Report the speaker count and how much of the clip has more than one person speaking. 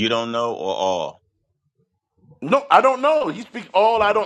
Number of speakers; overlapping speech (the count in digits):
2, no overlap